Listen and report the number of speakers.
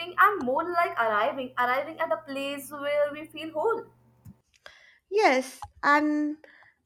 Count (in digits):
2